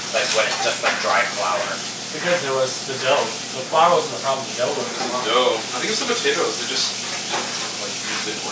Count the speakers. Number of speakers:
3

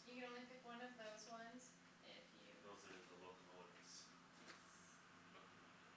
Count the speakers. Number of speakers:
2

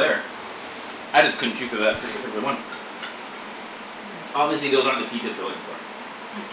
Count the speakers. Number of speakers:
1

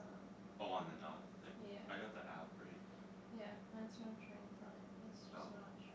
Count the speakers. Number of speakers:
2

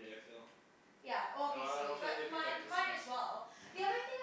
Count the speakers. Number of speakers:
2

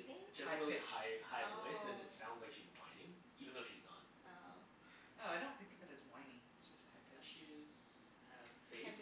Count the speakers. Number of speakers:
4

